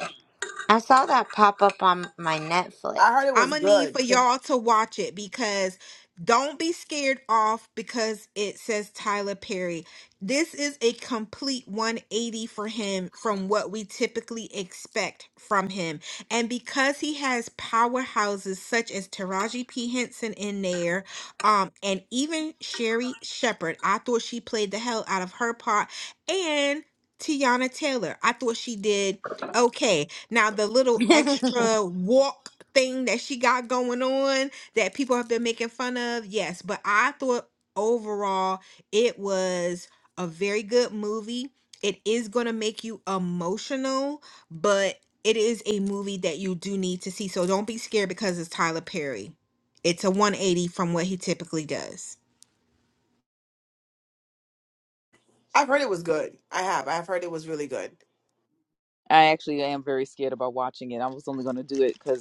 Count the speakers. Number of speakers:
four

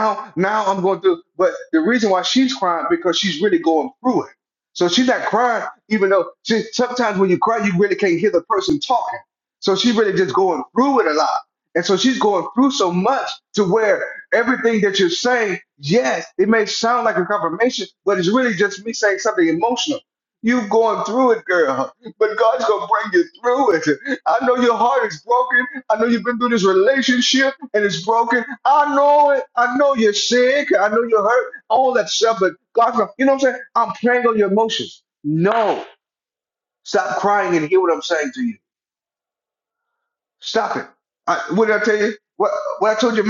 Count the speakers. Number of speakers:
one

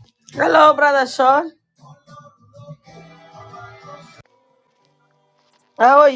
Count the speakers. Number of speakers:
one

